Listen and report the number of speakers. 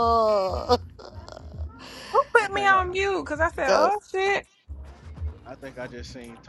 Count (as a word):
three